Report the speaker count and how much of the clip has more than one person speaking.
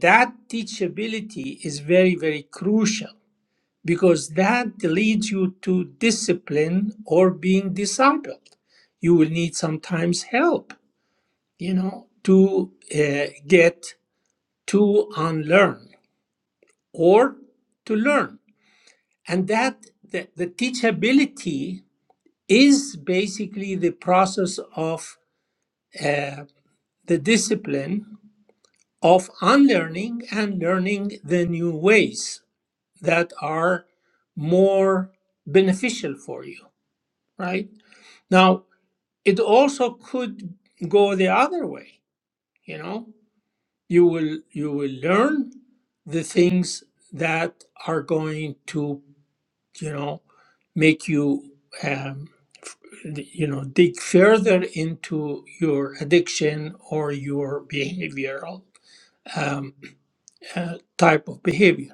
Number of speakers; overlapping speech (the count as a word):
one, no overlap